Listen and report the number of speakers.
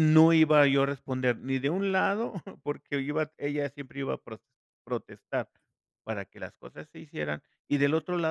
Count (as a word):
one